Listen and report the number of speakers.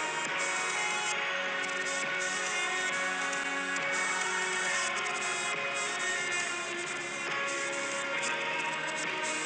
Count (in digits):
0